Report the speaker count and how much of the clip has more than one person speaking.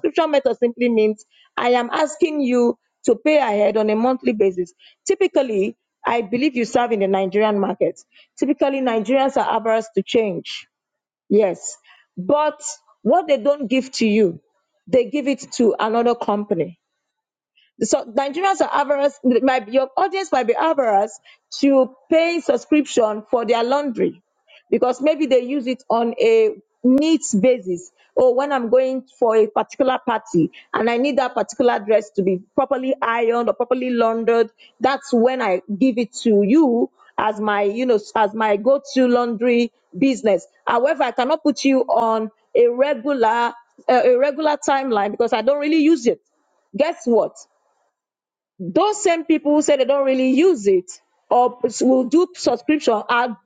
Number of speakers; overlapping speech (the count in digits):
1, no overlap